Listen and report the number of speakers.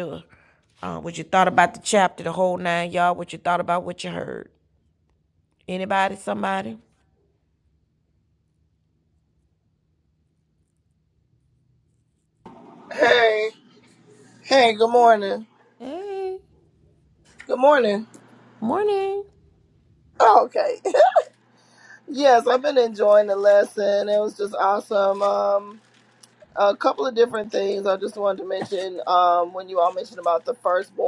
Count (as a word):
two